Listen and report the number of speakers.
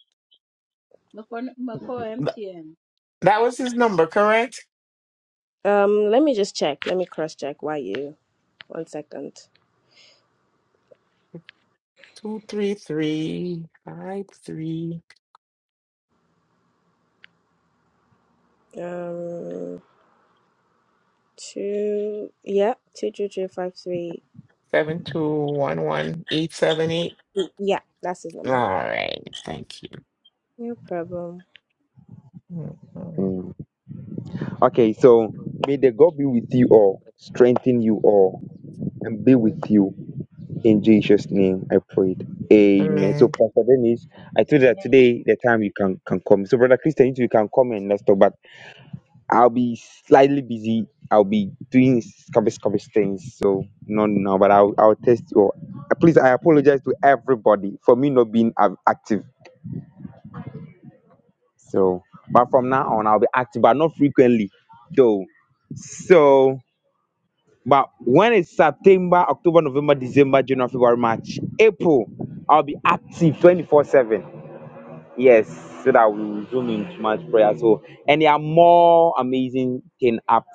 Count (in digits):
4